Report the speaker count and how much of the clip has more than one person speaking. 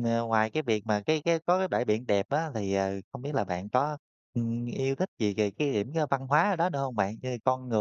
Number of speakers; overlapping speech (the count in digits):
1, no overlap